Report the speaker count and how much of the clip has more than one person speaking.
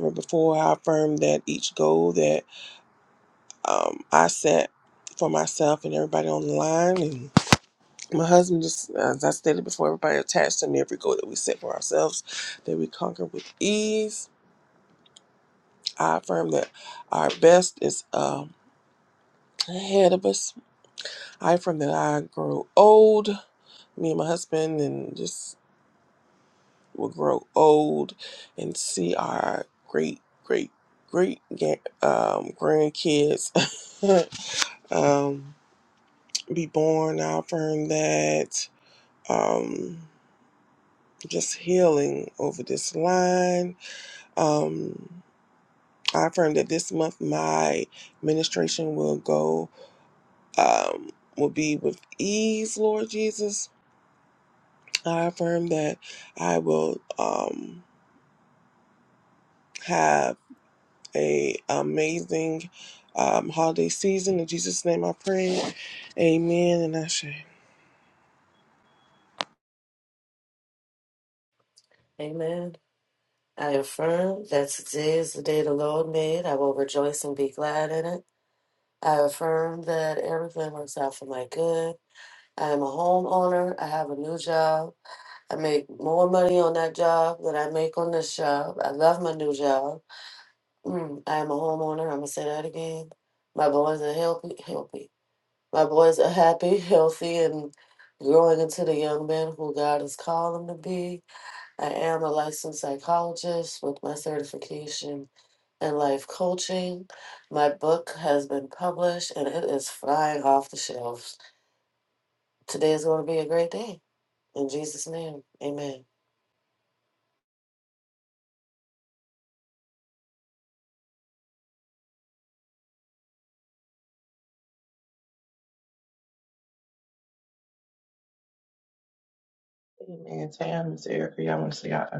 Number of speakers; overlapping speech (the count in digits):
3, no overlap